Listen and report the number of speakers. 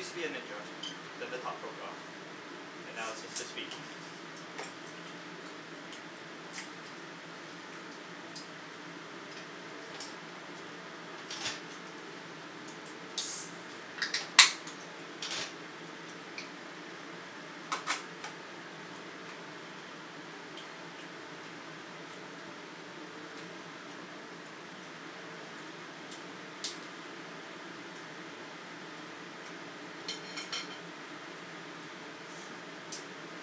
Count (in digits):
1